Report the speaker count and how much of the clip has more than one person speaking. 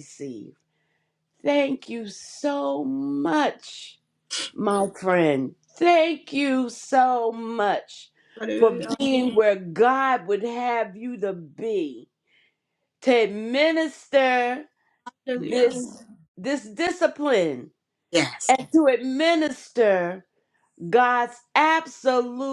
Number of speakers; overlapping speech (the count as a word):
two, about 3%